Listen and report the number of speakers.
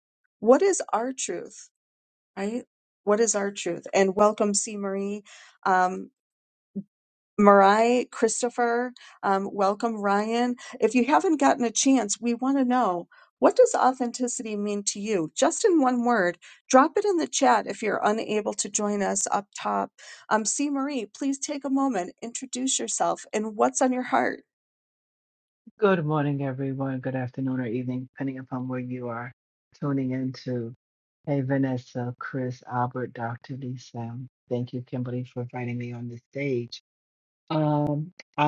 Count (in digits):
2